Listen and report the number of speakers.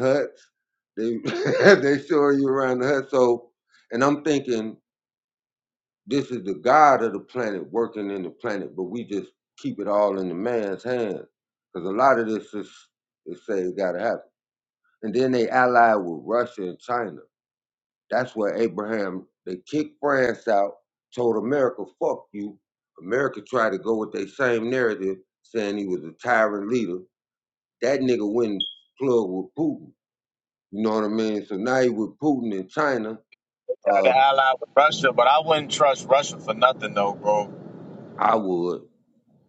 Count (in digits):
2